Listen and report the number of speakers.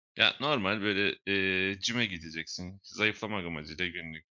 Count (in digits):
1